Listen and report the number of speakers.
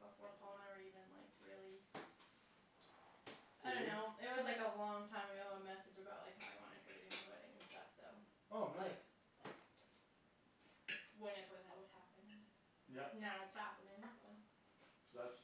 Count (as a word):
two